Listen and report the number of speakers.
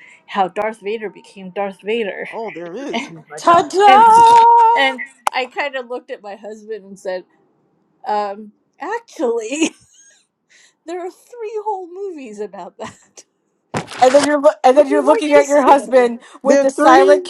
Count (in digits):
3